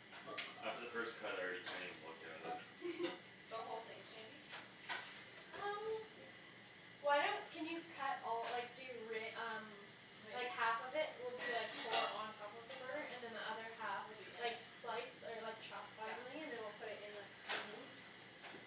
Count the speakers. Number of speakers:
three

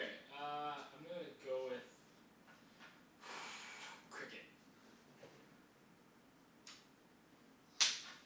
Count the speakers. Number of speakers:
one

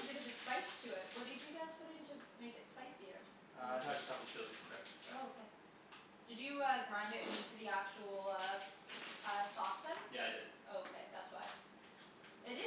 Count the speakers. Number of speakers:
two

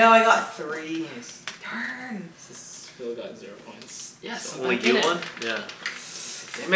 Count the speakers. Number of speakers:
three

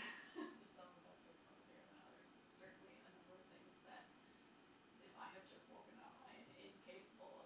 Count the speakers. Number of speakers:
one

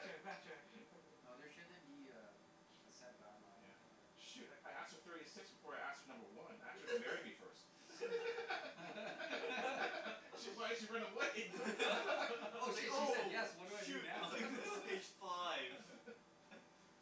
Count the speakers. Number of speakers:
four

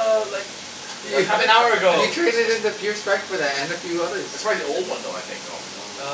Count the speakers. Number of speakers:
three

